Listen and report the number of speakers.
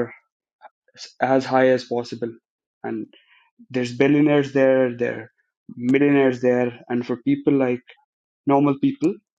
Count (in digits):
1